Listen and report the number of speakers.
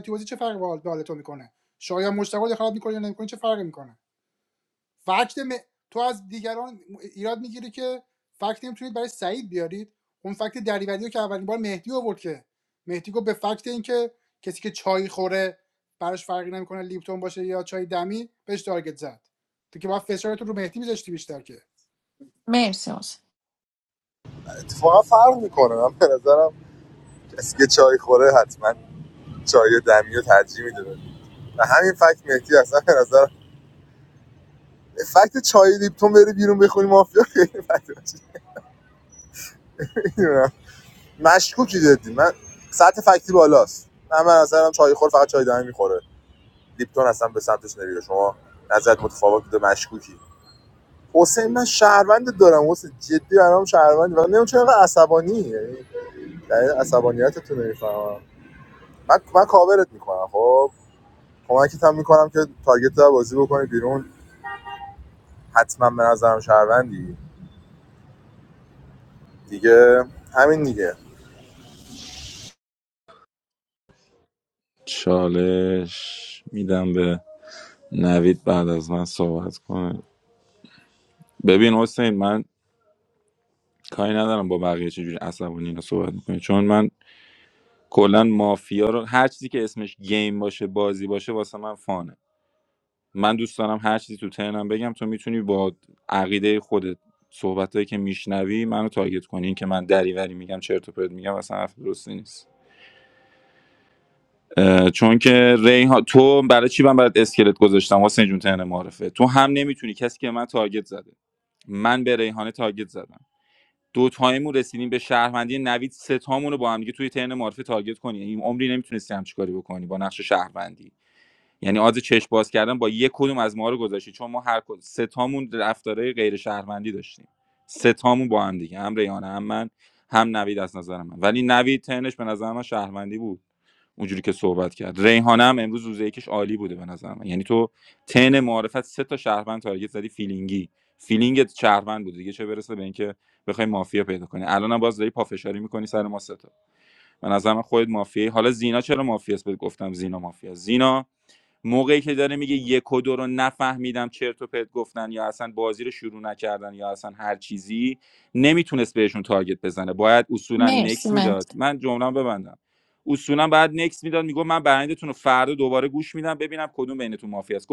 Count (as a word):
four